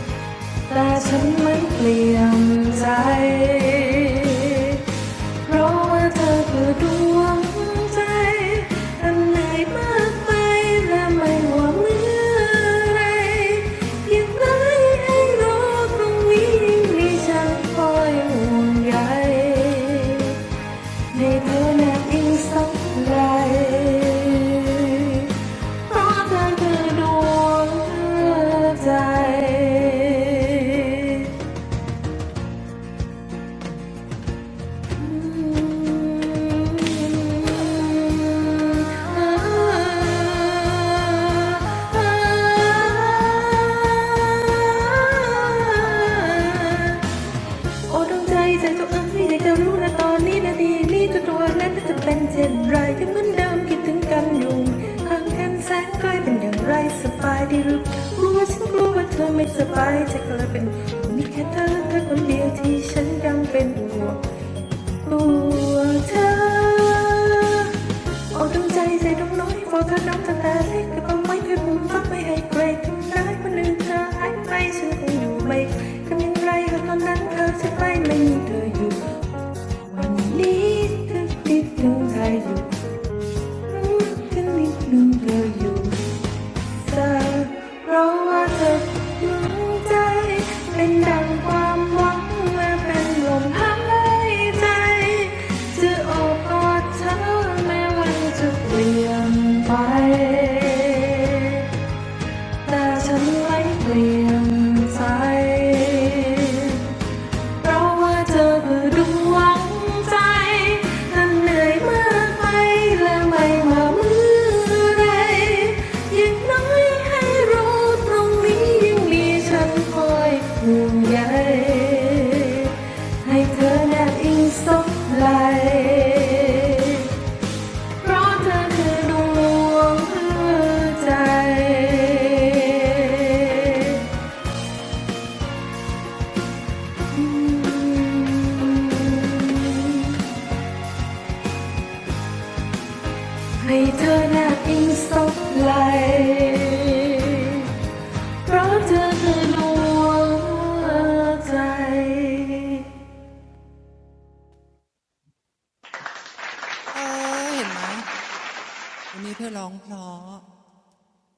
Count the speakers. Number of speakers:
two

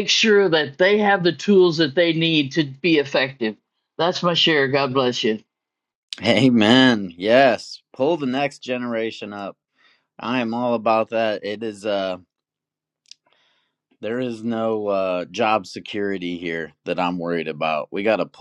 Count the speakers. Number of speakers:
two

